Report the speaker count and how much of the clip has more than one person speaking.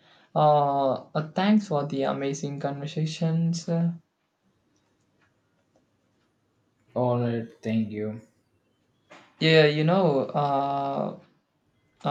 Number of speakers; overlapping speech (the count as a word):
two, no overlap